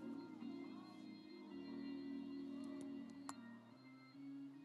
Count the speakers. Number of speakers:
zero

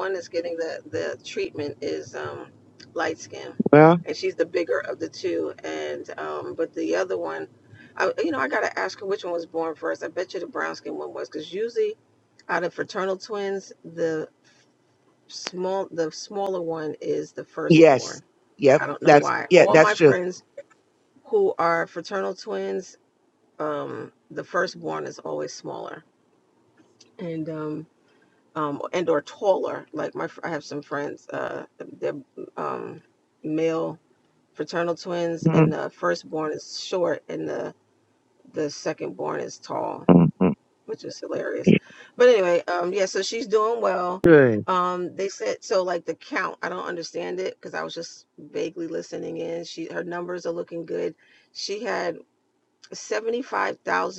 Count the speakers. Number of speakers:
two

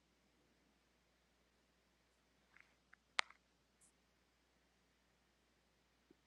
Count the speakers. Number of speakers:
zero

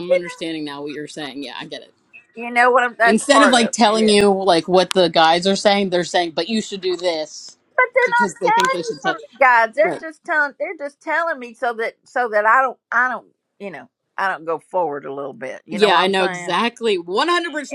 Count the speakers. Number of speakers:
two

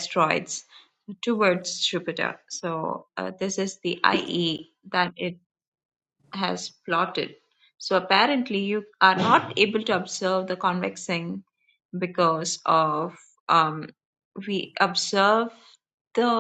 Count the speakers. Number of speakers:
one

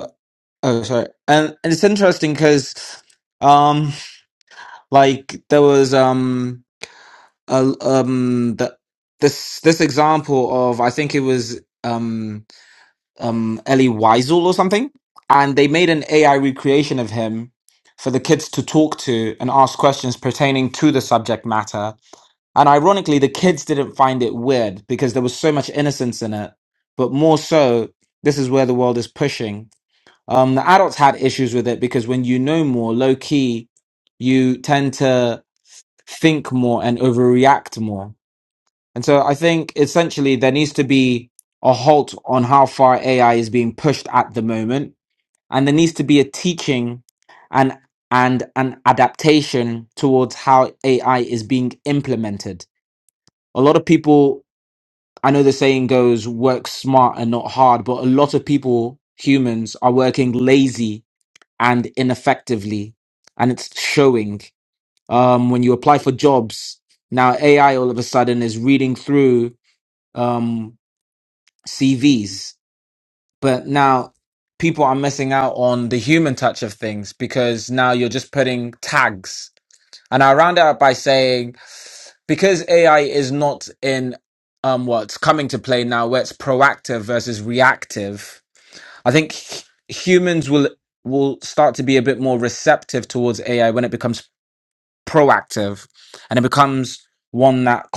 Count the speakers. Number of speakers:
one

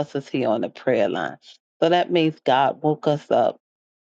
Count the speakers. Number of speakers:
one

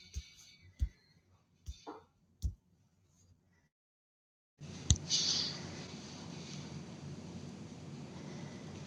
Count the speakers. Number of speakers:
zero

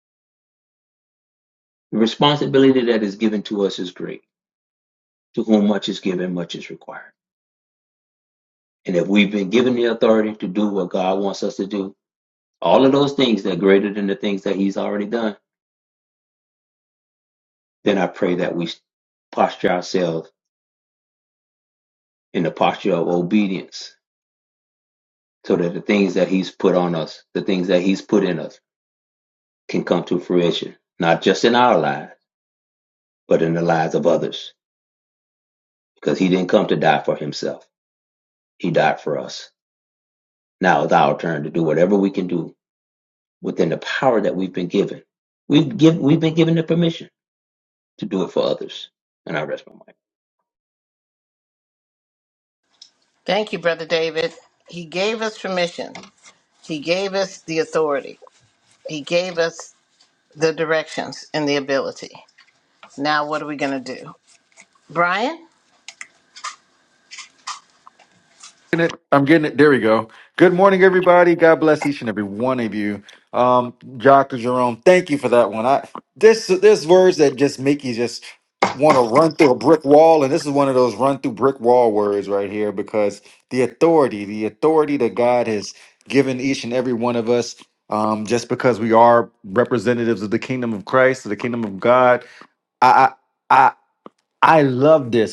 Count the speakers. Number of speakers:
three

